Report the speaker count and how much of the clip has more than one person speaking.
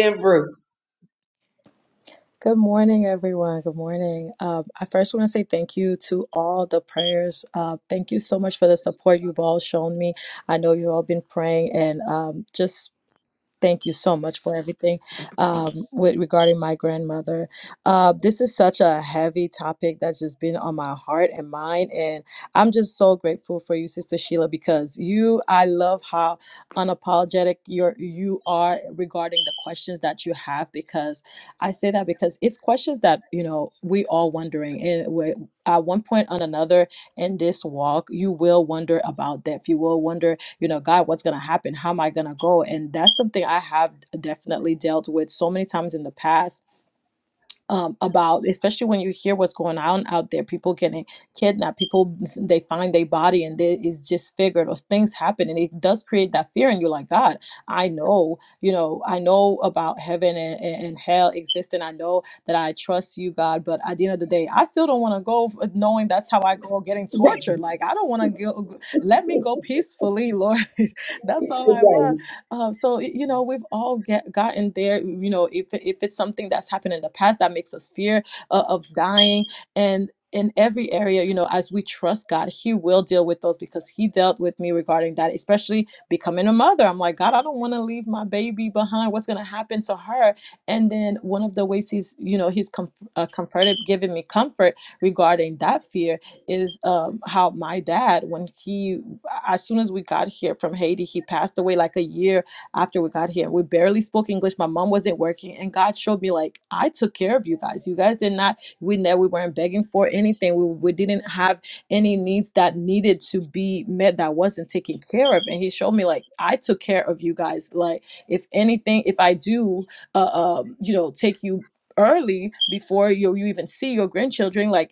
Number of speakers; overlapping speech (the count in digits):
2, under 1%